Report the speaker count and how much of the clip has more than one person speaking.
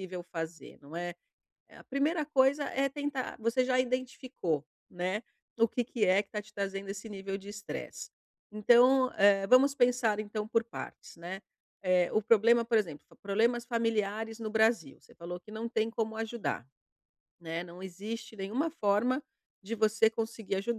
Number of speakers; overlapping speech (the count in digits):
1, no overlap